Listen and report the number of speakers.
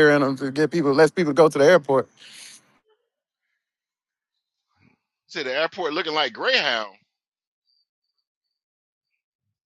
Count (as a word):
two